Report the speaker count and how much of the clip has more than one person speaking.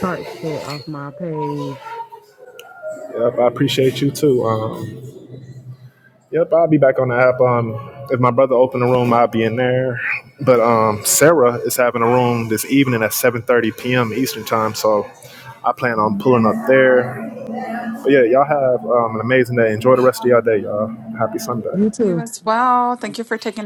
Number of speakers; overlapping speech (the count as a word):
three, about 1%